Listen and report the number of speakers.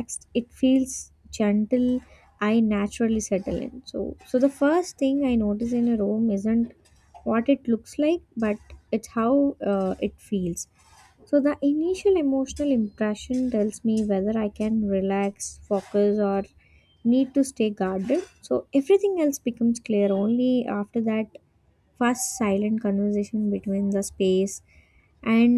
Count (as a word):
one